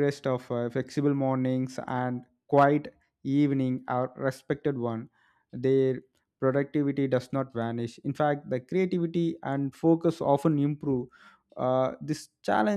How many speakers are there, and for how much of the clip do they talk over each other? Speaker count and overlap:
1, no overlap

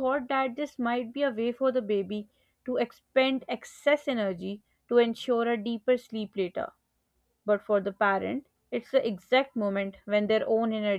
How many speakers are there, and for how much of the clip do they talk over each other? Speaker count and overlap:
1, no overlap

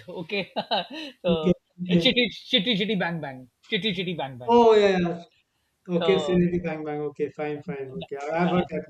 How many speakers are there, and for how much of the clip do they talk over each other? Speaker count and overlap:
2, about 23%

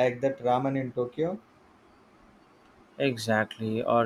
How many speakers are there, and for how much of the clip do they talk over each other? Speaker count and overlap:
2, no overlap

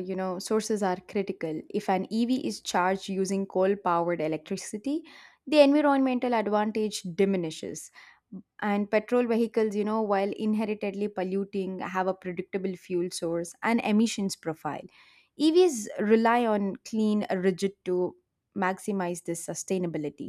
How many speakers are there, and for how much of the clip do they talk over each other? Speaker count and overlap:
1, no overlap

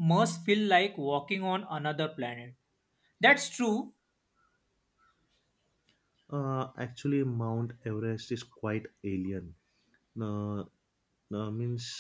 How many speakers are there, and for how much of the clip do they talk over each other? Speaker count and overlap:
2, no overlap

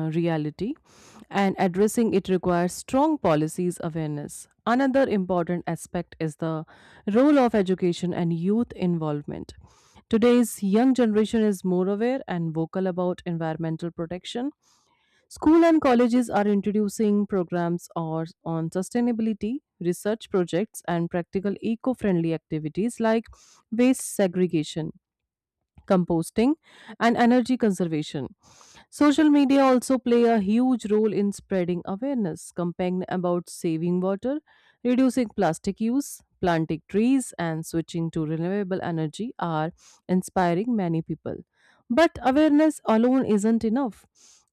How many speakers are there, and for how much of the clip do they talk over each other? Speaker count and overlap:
1, no overlap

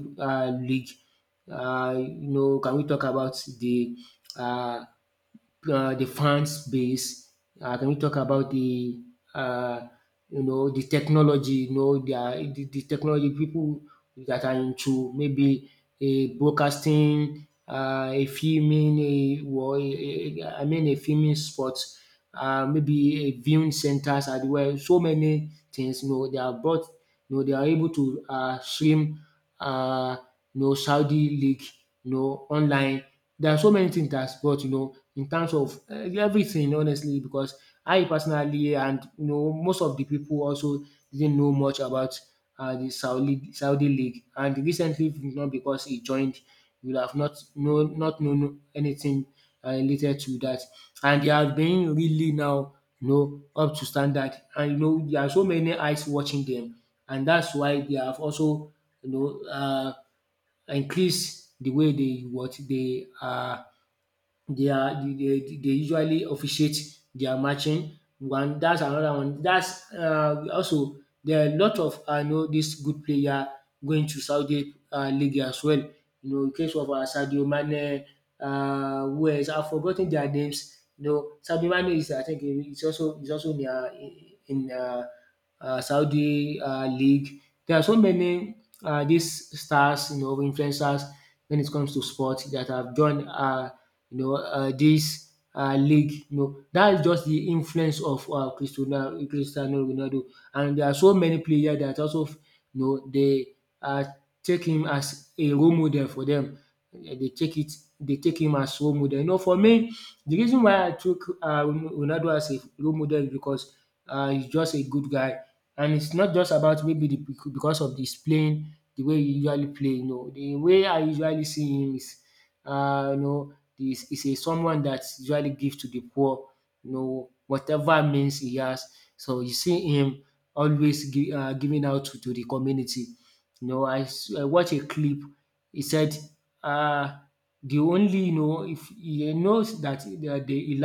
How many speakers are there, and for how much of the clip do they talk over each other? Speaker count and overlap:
1, no overlap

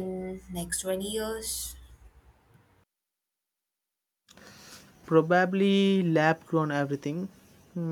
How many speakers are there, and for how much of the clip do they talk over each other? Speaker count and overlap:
2, no overlap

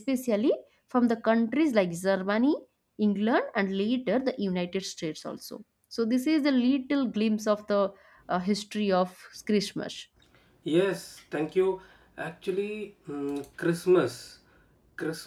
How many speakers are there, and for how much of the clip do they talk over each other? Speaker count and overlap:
2, no overlap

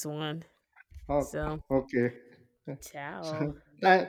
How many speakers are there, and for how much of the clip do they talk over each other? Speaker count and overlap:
2, about 2%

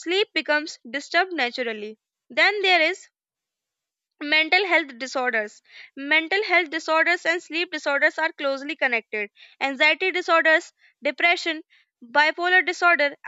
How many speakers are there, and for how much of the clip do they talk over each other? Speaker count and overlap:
1, no overlap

